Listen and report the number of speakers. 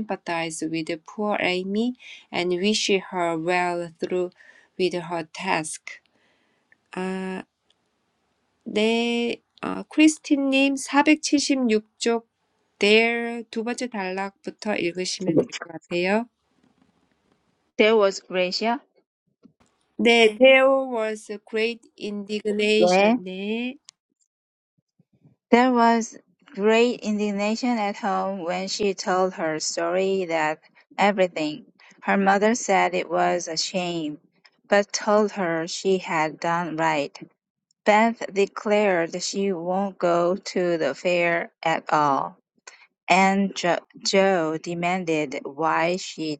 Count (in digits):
2